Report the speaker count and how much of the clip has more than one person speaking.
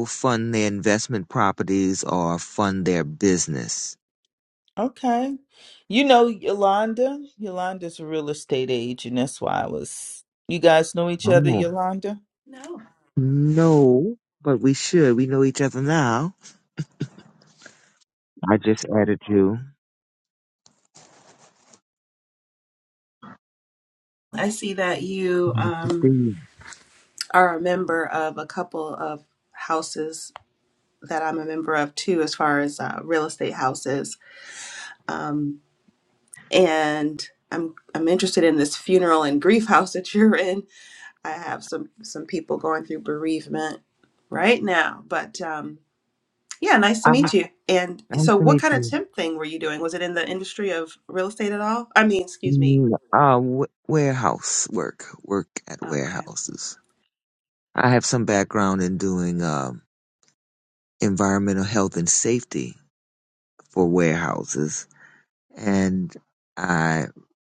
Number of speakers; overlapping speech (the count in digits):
3, about 3%